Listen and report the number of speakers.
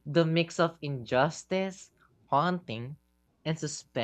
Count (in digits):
1